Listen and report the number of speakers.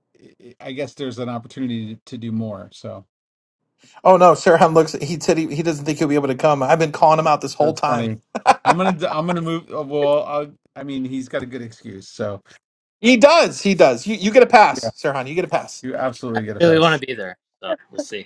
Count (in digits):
3